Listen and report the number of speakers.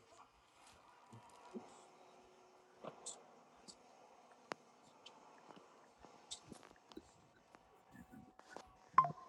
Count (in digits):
0